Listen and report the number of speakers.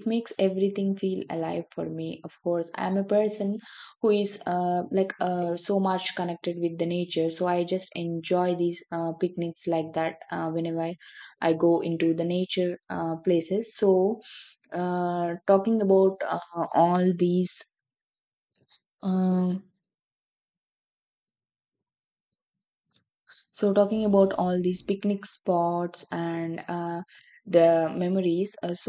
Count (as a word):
one